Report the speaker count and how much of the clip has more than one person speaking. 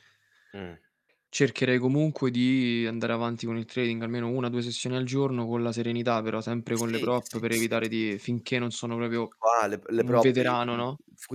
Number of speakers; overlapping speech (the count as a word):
two, about 20%